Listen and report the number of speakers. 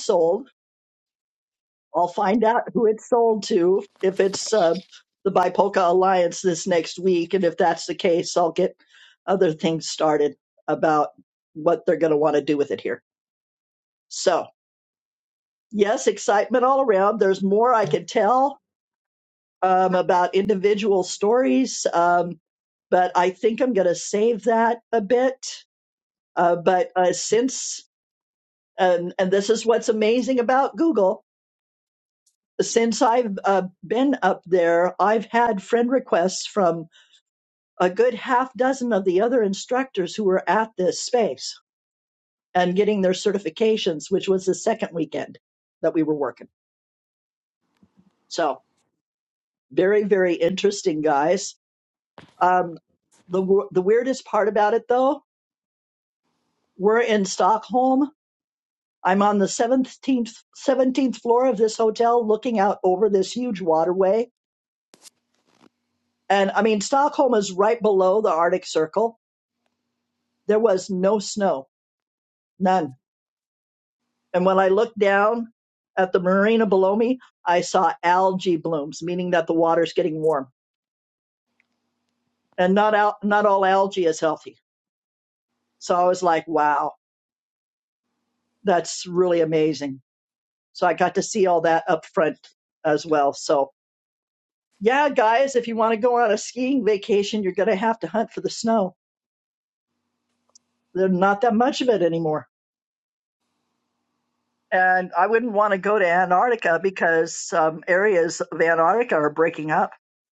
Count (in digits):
1